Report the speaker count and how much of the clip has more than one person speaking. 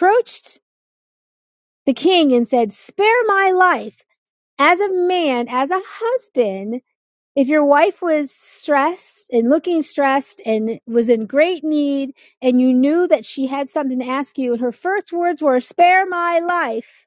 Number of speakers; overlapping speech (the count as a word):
one, no overlap